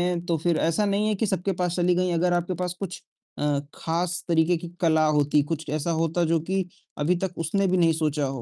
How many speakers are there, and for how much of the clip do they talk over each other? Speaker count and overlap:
1, no overlap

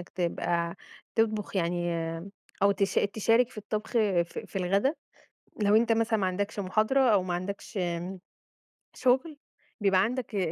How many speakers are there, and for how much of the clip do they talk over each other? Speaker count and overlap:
1, no overlap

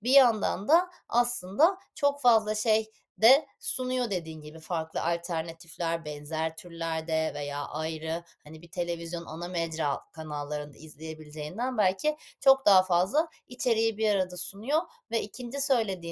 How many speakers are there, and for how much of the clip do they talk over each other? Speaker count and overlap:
1, no overlap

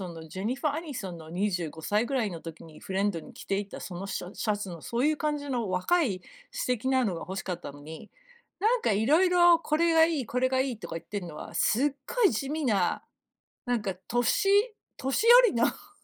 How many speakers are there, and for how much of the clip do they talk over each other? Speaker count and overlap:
1, no overlap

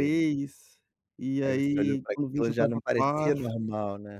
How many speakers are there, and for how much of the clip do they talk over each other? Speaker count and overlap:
2, about 52%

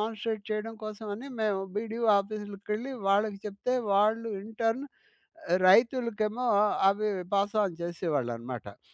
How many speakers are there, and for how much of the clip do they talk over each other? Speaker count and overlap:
1, no overlap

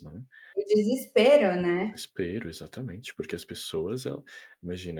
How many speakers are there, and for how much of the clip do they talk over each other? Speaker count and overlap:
2, about 6%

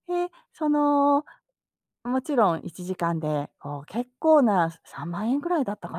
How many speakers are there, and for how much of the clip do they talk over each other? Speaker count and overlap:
1, no overlap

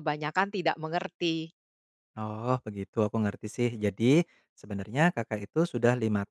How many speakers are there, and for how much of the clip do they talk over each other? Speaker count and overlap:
2, no overlap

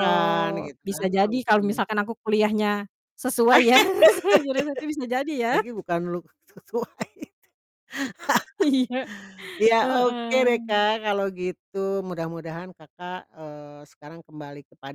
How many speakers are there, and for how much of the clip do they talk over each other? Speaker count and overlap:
2, about 19%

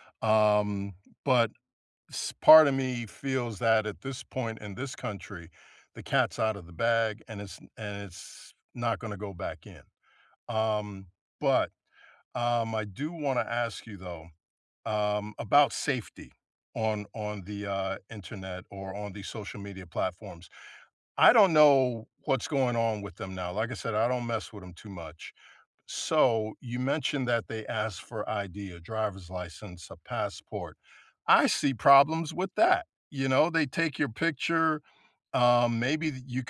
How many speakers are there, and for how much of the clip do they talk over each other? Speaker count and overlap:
1, no overlap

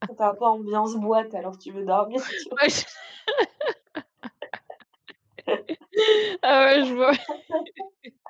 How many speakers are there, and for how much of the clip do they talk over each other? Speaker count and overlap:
2, under 1%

